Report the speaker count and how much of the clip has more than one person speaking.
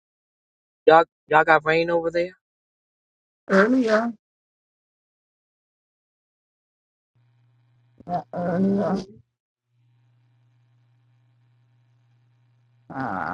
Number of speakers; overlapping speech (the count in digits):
2, no overlap